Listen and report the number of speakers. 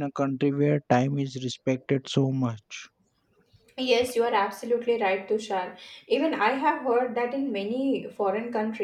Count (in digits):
2